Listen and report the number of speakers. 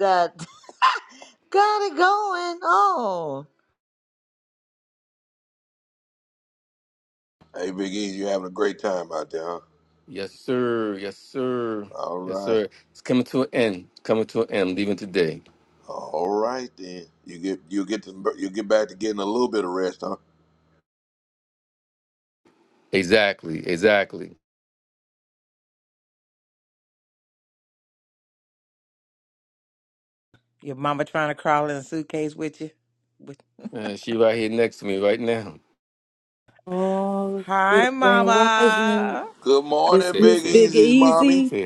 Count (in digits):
5